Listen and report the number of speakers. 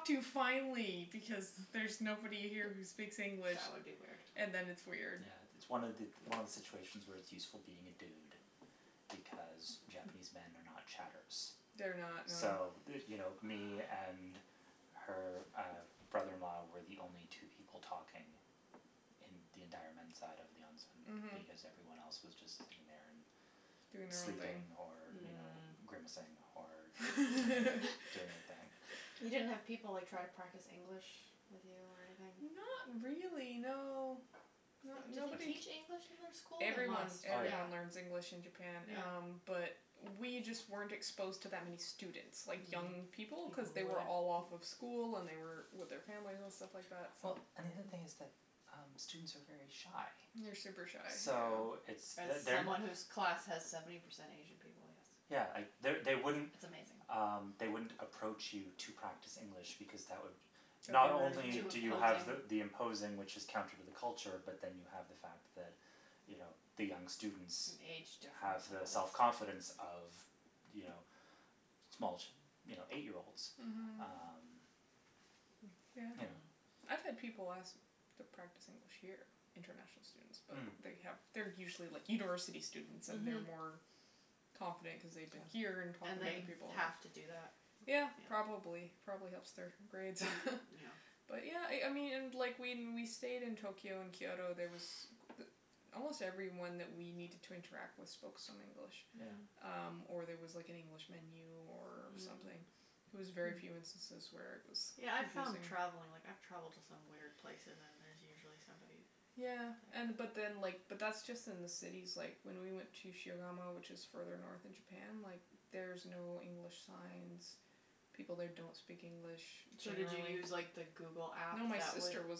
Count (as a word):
three